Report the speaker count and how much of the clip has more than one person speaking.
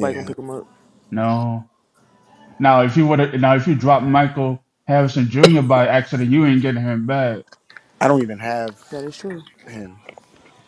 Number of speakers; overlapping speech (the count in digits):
3, about 3%